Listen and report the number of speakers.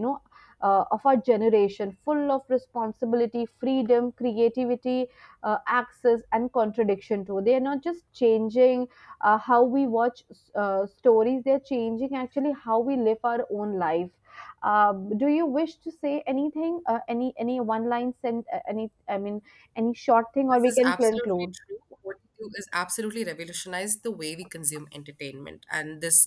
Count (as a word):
two